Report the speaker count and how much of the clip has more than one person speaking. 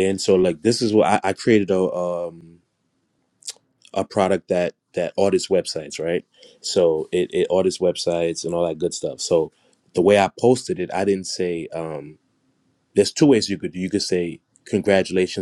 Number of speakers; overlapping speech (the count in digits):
1, no overlap